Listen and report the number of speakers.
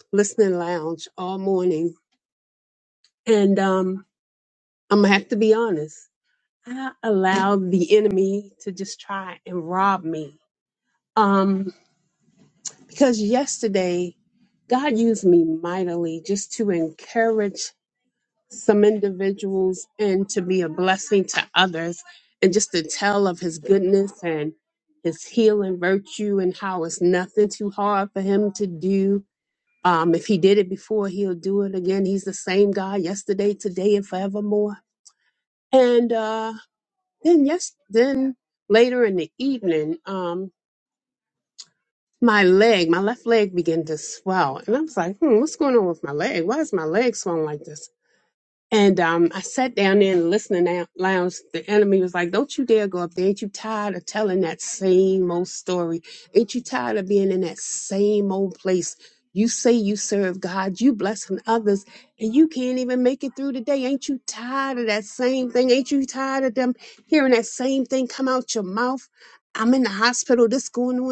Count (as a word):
one